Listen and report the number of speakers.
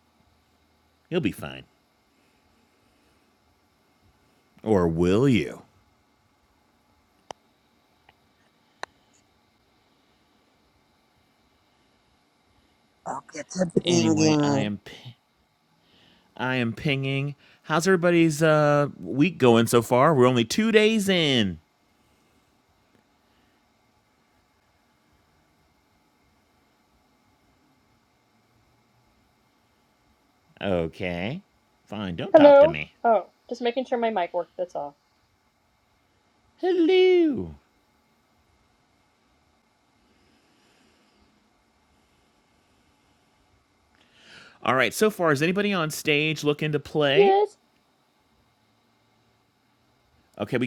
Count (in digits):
3